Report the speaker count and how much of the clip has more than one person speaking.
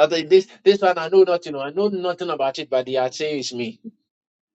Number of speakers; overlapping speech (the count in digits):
1, no overlap